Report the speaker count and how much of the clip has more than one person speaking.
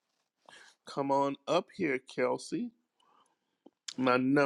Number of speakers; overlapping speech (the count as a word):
one, no overlap